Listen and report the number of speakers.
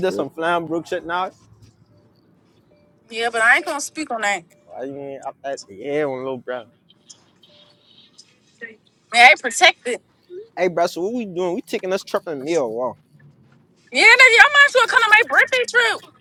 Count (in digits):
2